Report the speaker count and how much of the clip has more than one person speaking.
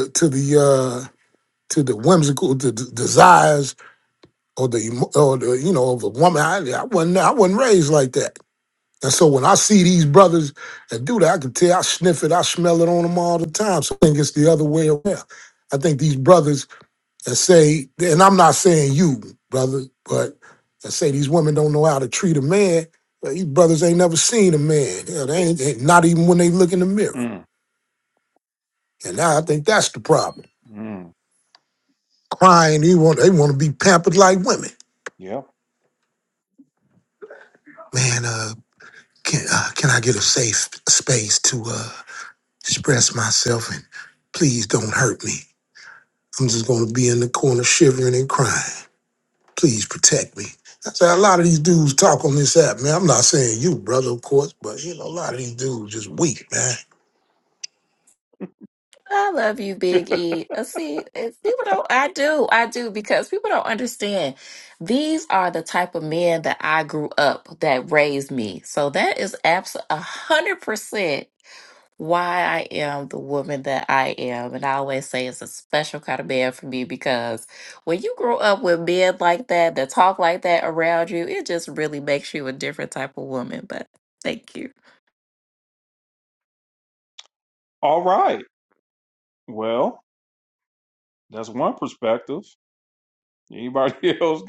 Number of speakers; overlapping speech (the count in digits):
3, under 1%